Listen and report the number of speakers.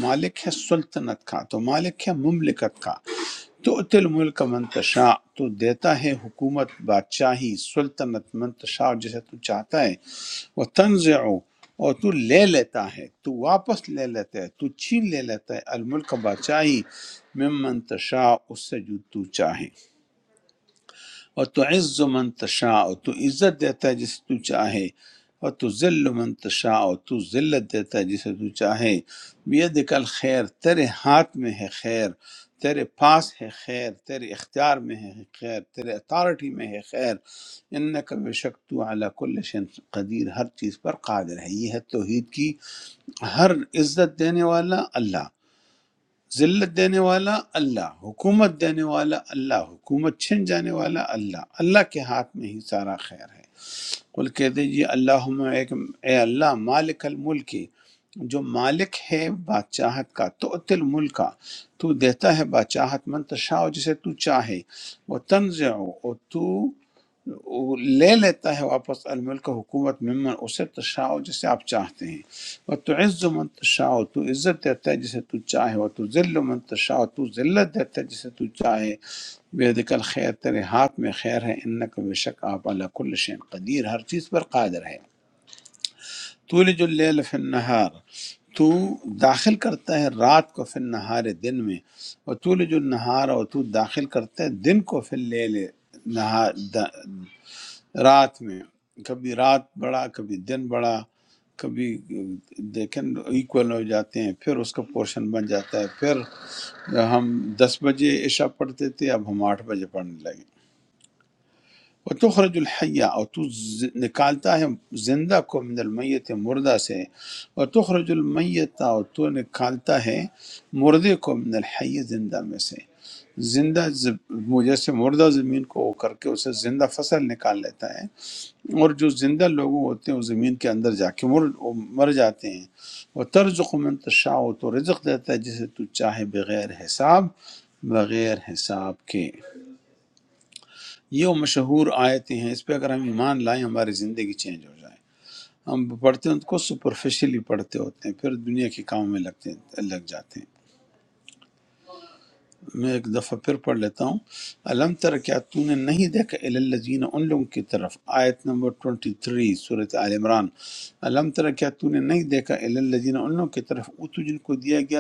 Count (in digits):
1